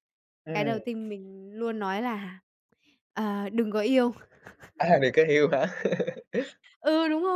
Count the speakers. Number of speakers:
two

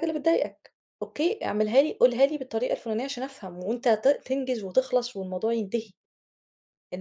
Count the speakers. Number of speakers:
one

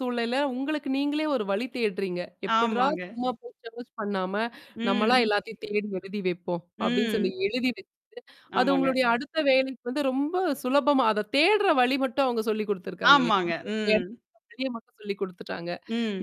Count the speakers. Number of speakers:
two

